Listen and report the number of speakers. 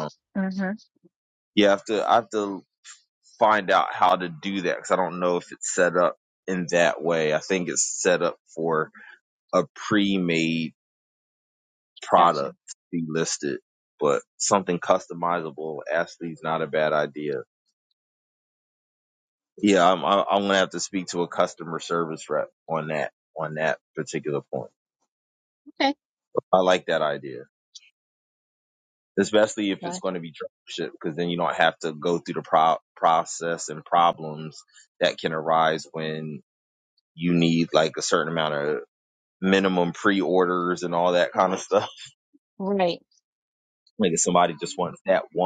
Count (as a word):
two